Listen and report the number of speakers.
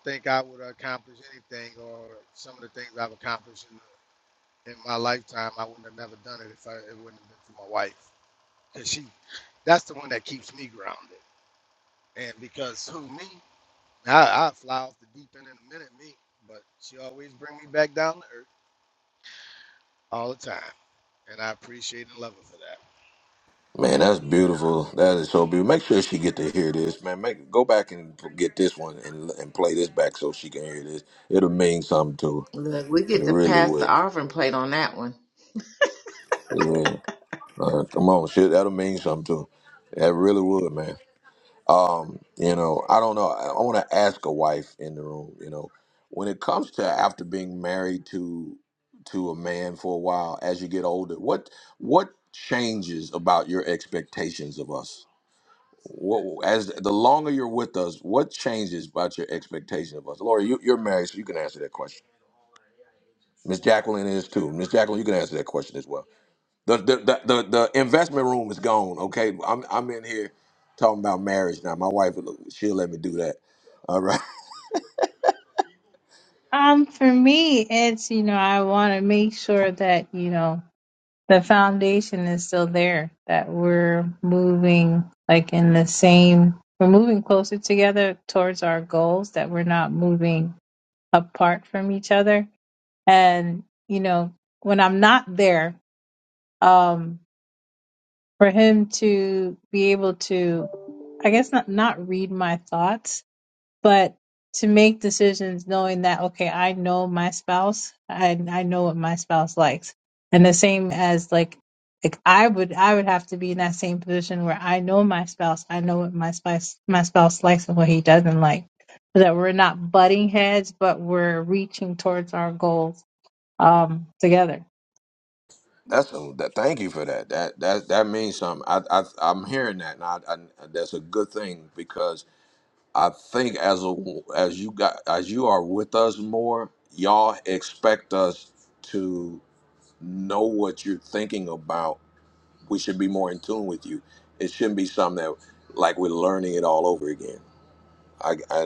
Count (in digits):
4